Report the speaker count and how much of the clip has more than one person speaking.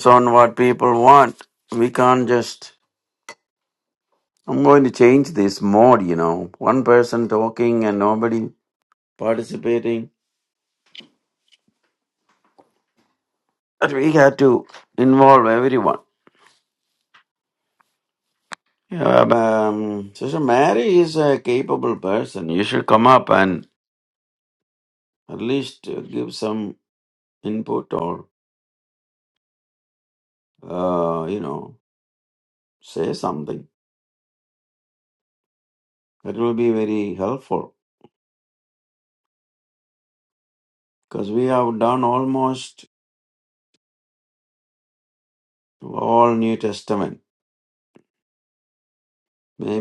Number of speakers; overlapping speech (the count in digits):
1, no overlap